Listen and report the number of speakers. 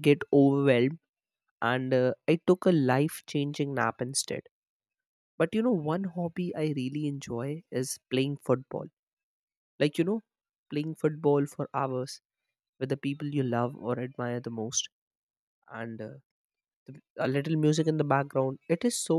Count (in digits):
1